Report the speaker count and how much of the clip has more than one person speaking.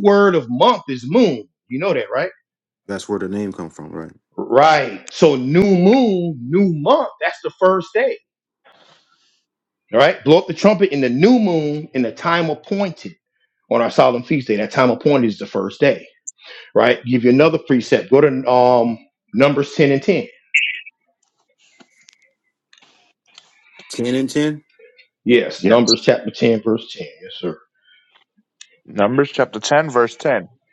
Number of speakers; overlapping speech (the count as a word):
three, about 1%